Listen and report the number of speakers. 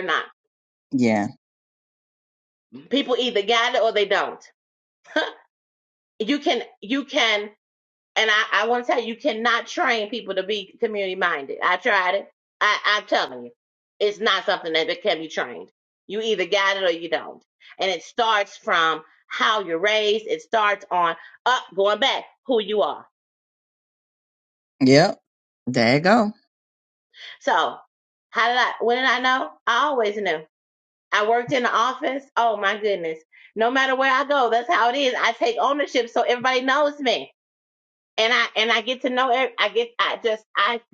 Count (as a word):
two